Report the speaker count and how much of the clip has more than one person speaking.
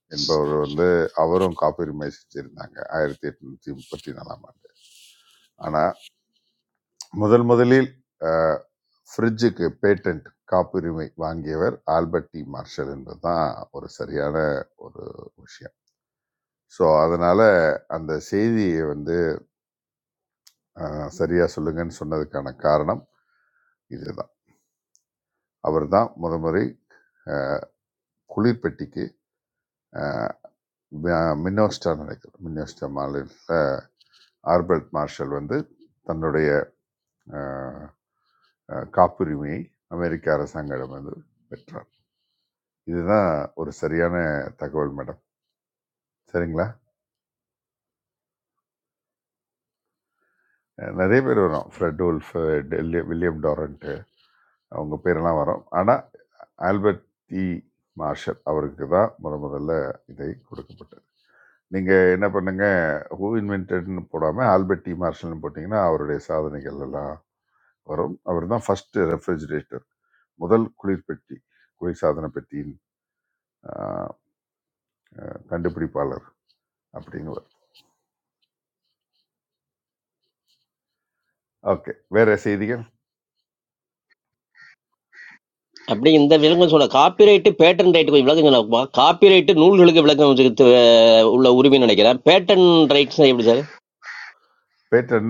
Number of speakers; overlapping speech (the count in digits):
2, no overlap